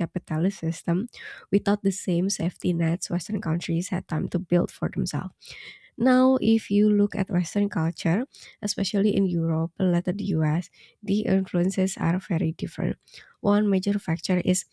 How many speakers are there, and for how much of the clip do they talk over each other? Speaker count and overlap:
one, no overlap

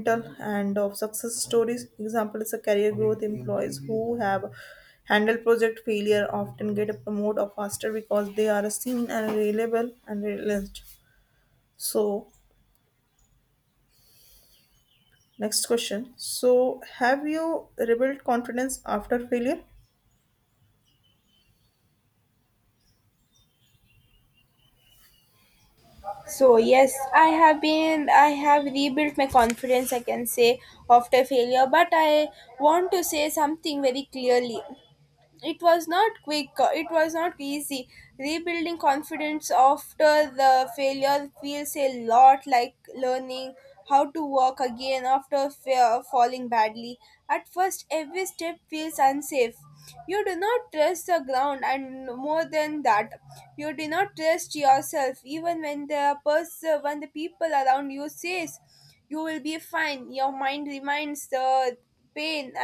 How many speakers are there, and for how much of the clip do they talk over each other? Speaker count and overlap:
two, no overlap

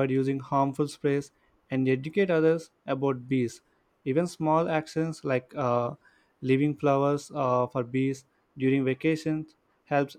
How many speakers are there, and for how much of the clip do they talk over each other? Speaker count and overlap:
one, no overlap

